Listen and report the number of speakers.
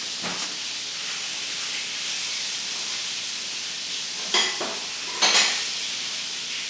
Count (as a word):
zero